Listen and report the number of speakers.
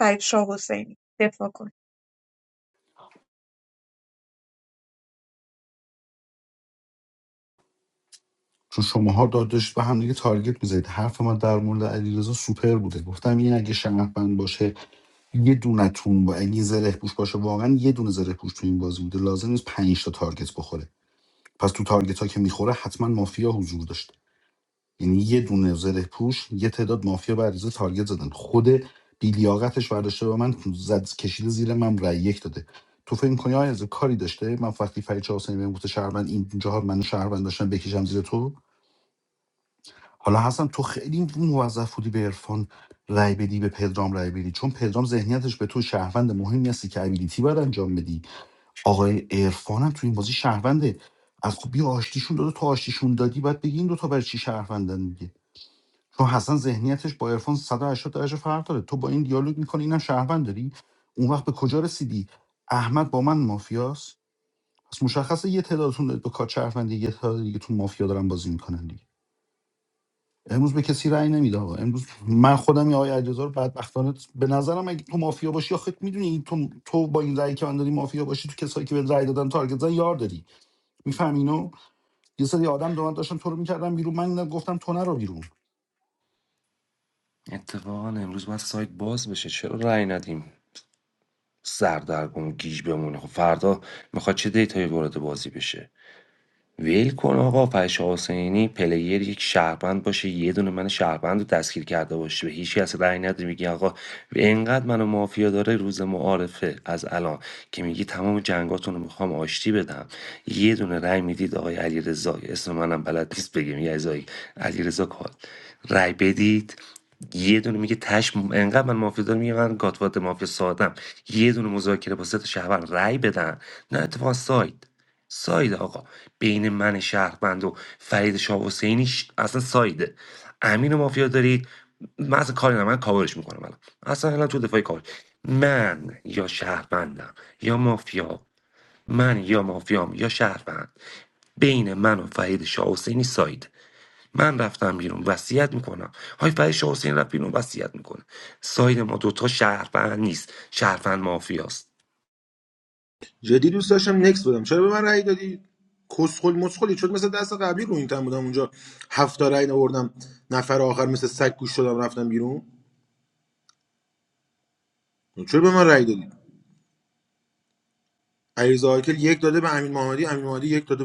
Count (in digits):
4